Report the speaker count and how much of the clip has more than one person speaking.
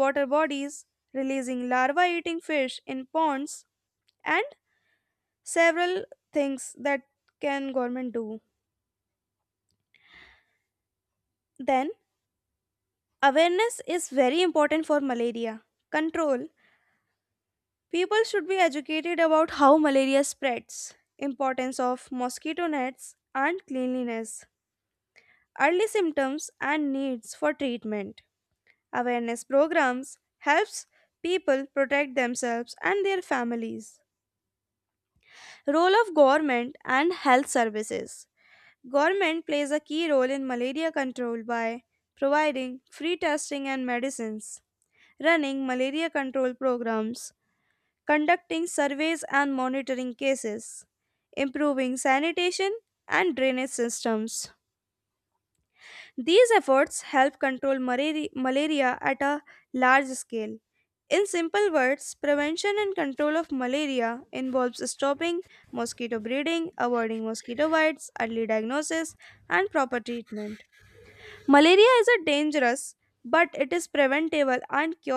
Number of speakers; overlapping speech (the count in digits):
1, no overlap